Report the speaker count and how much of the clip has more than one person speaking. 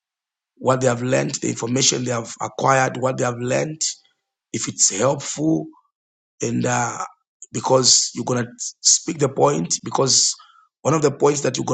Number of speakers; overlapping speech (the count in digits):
1, no overlap